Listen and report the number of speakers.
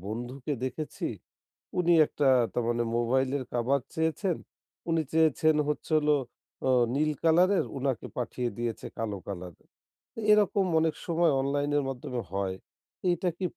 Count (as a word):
one